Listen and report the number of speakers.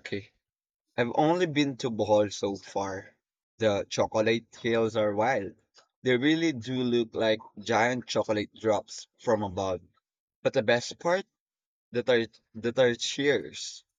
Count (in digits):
1